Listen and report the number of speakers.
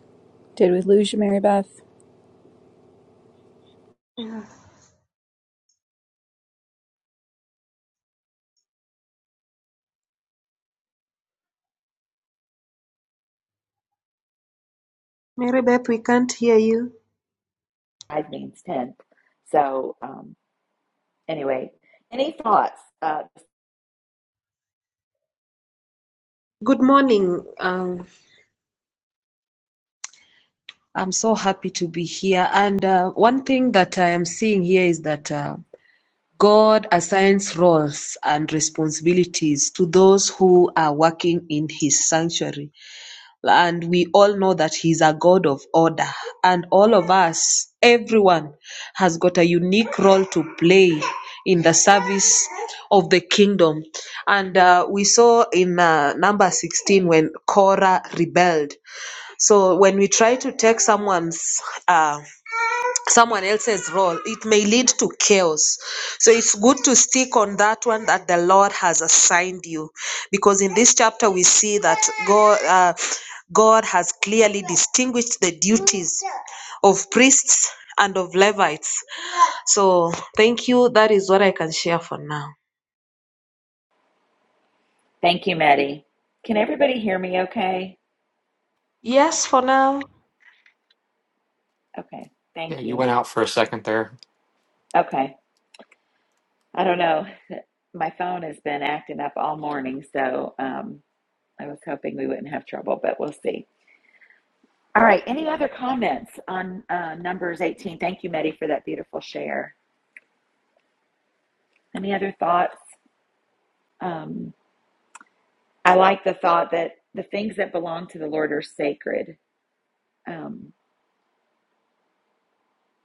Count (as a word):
four